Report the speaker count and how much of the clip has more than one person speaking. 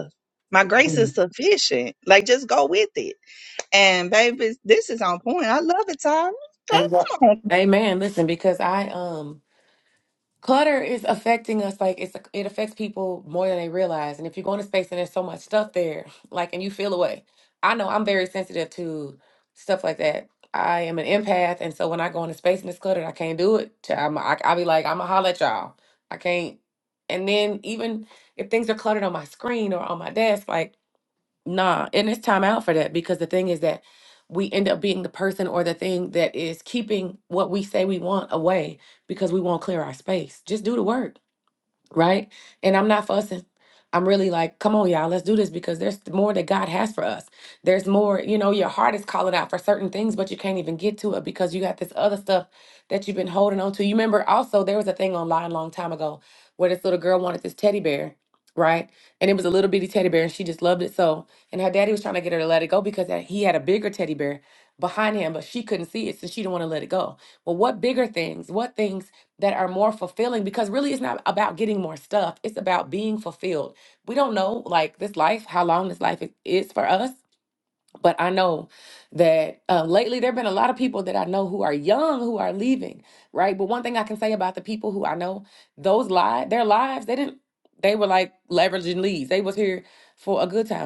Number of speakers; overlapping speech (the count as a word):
two, no overlap